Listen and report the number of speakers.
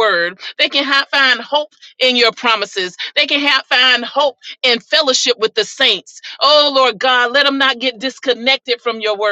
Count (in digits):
1